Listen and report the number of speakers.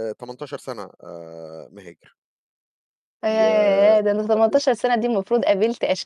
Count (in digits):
2